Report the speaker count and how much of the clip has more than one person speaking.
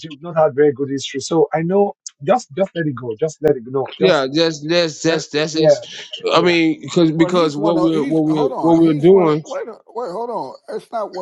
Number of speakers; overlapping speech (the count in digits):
3, about 30%